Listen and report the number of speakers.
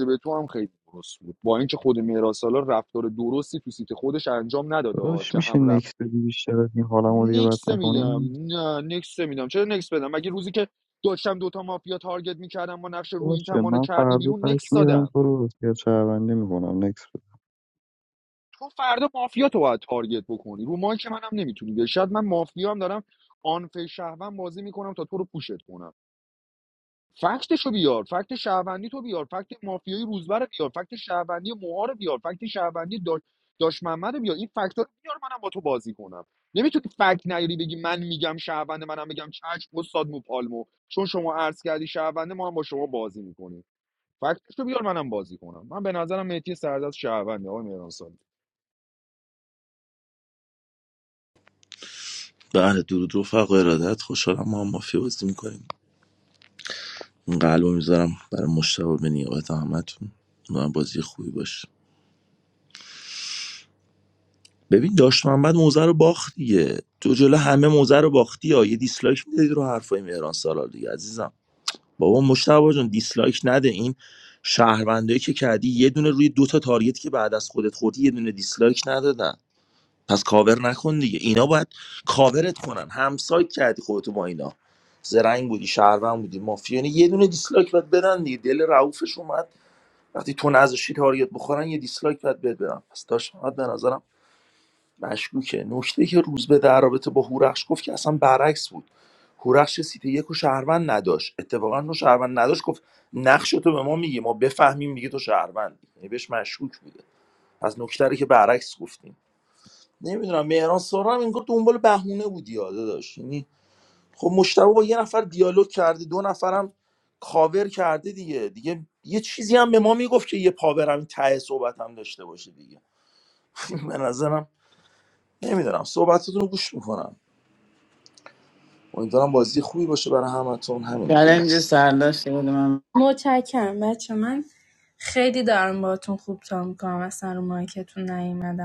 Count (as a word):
five